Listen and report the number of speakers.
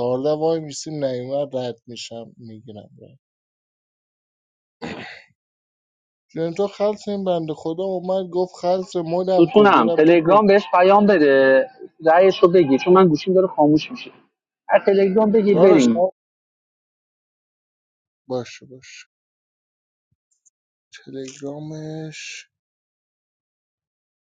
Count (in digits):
2